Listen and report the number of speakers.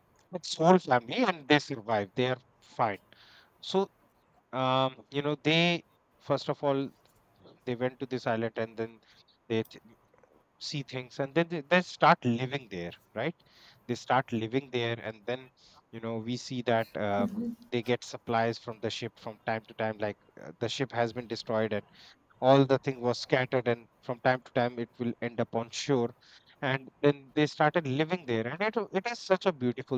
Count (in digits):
1